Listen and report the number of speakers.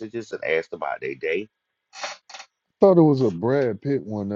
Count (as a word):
two